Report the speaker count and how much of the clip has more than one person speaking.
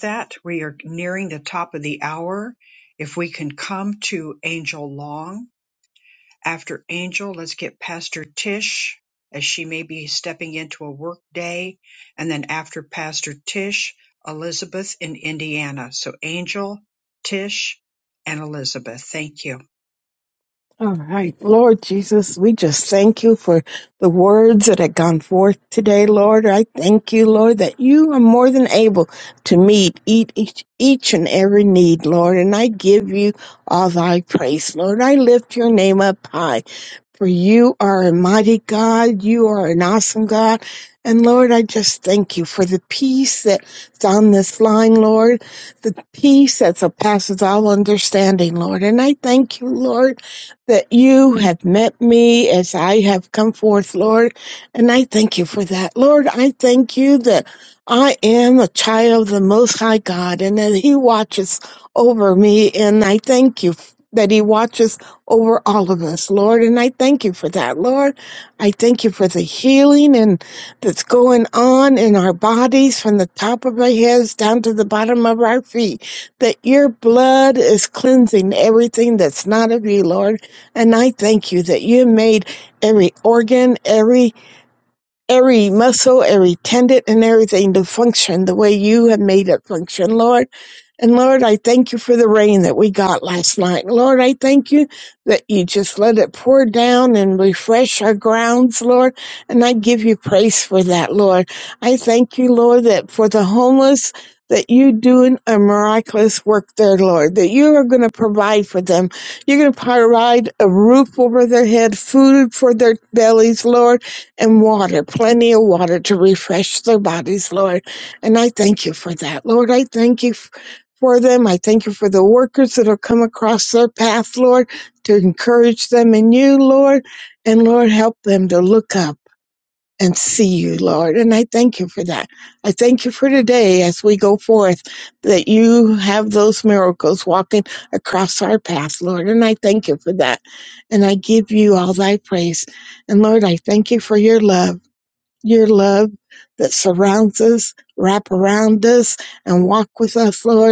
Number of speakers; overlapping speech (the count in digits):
2, no overlap